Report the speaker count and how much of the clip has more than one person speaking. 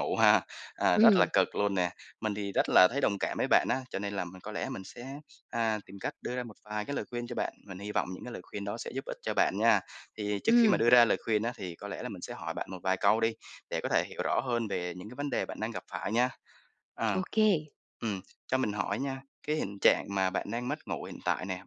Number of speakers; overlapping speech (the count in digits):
2, about 3%